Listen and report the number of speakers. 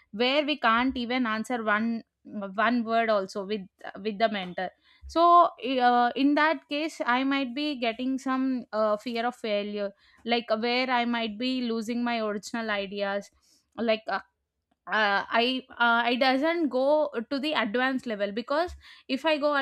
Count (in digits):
1